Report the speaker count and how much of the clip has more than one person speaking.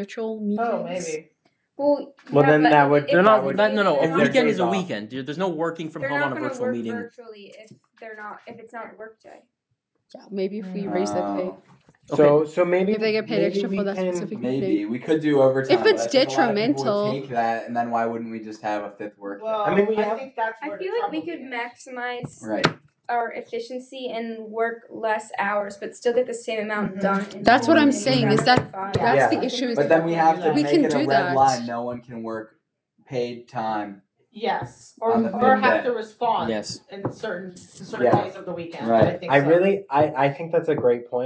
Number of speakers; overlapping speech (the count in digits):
6, about 45%